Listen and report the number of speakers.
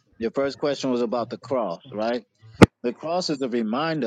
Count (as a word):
one